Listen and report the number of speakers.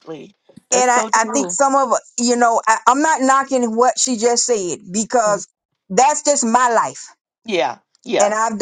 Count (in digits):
2